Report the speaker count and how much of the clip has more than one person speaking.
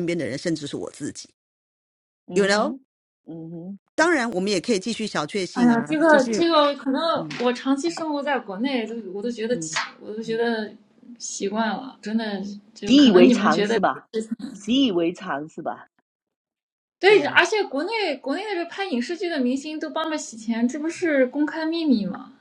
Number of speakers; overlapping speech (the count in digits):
3, about 13%